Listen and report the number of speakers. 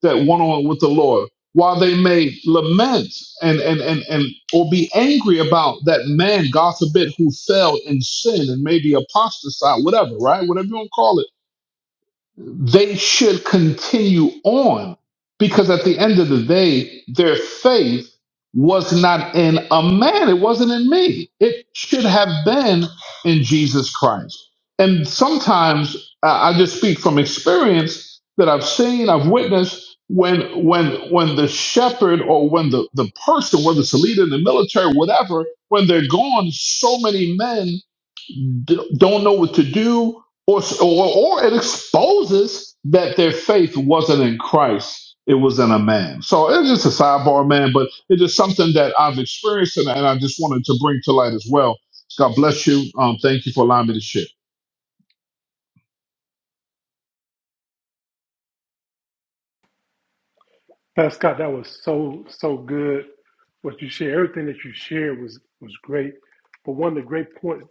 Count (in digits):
2